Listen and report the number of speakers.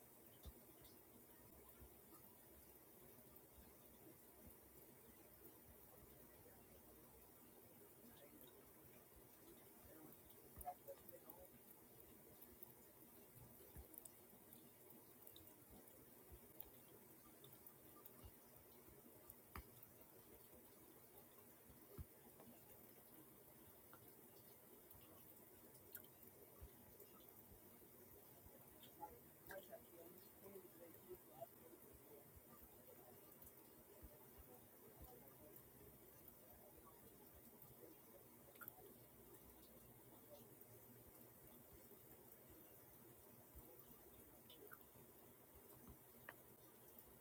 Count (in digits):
0